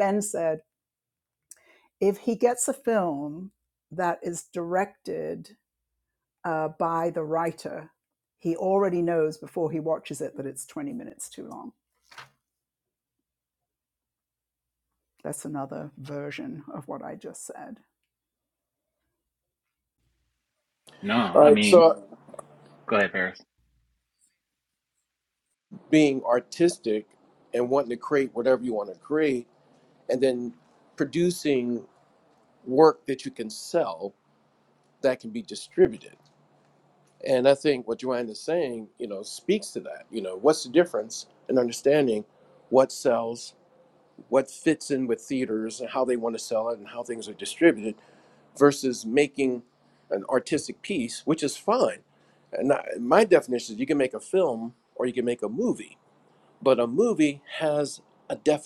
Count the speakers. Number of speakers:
three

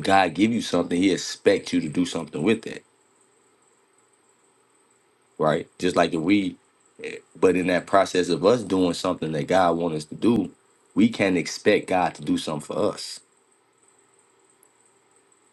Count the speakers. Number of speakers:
one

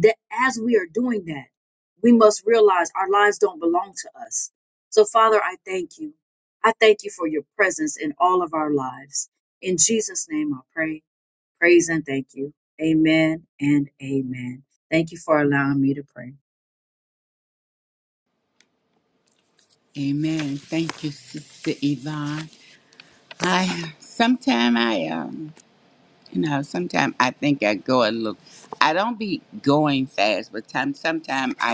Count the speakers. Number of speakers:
two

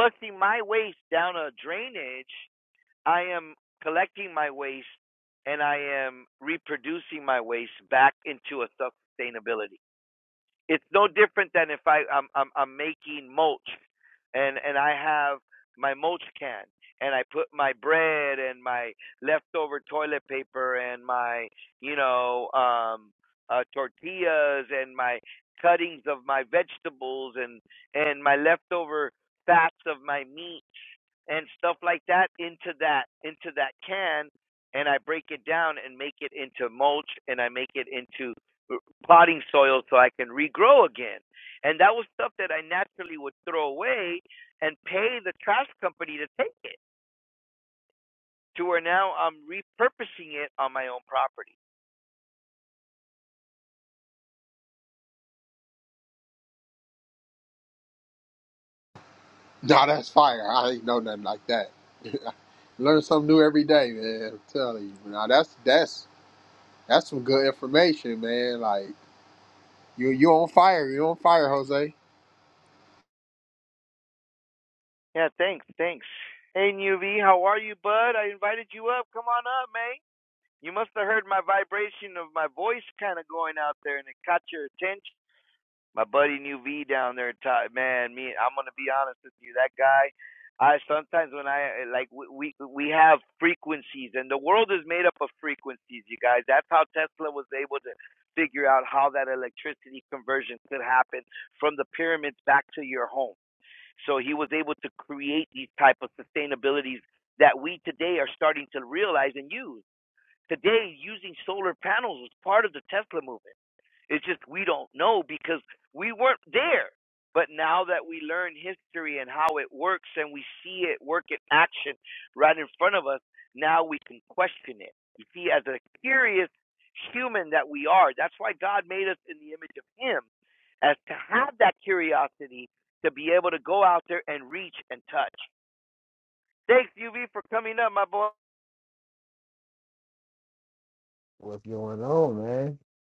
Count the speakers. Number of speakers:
three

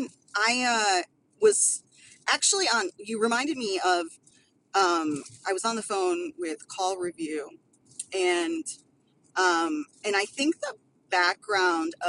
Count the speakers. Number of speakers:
one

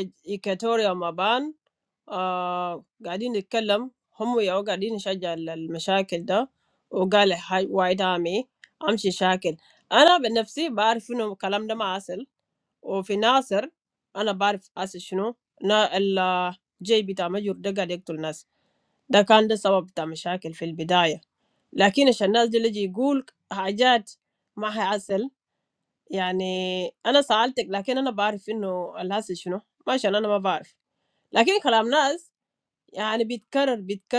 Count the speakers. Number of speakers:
one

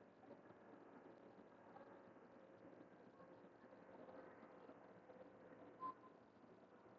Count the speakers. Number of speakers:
zero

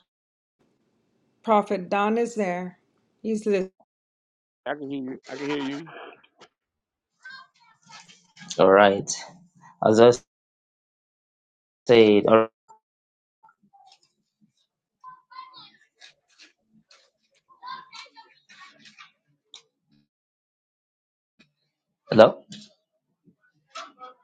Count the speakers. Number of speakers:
three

